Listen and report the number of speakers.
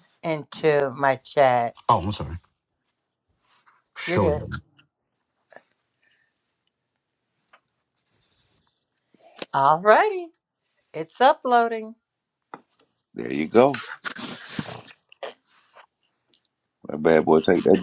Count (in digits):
3